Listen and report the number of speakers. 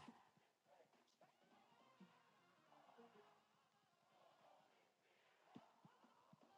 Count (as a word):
zero